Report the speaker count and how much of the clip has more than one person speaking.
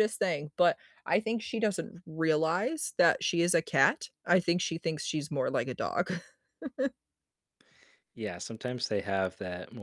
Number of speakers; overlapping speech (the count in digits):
2, no overlap